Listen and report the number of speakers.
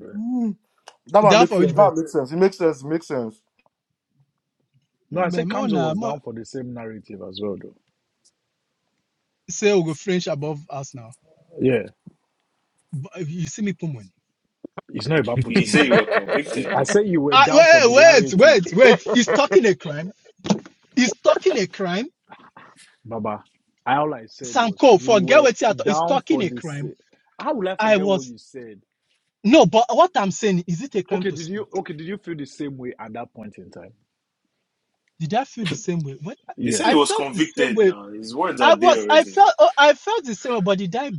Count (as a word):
four